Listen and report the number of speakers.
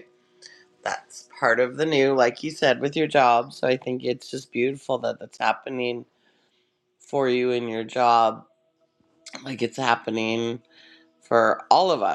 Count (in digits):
1